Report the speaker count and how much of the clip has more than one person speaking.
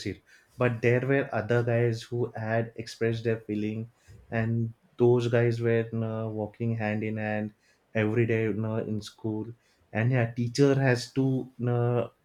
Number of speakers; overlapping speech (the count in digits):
1, no overlap